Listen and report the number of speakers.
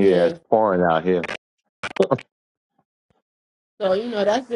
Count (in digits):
2